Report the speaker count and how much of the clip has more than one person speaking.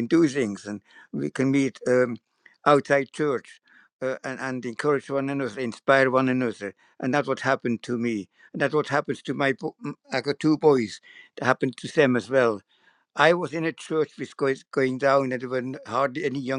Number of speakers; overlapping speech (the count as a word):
one, no overlap